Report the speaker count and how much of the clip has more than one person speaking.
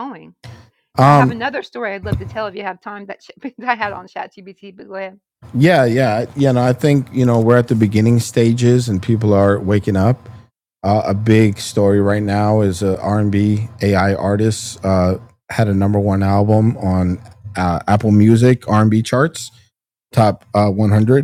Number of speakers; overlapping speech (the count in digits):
2, about 2%